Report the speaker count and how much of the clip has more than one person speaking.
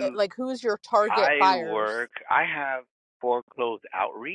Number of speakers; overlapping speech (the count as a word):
two, about 23%